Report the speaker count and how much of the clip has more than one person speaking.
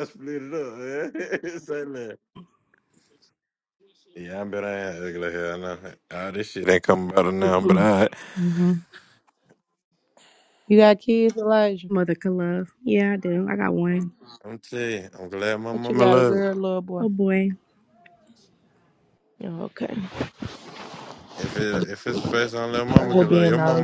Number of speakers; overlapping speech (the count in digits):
3, about 9%